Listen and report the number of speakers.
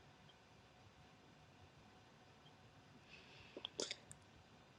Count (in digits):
0